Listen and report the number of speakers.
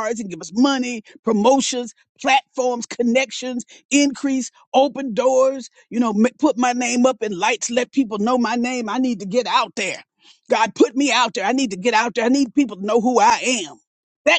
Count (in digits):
1